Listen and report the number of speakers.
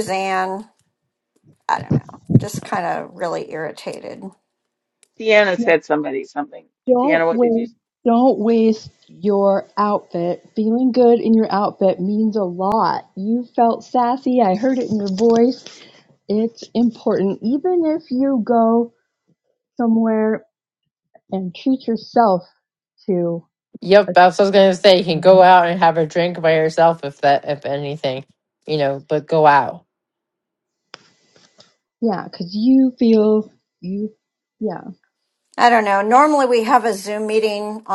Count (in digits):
4